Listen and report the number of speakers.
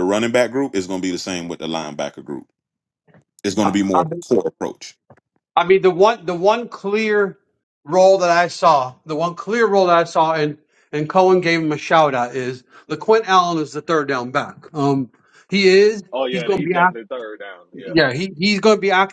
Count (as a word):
three